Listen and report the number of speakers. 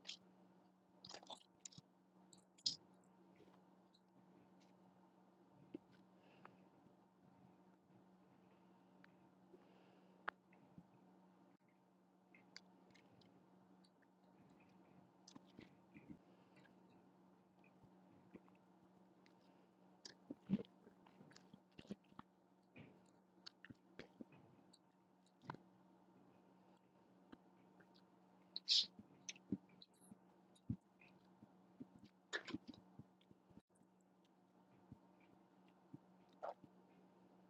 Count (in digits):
0